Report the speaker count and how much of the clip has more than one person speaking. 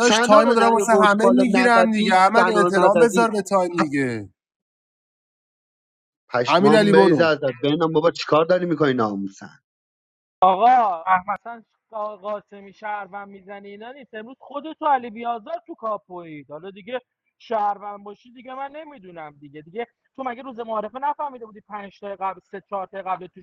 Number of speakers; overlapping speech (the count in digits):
3, about 17%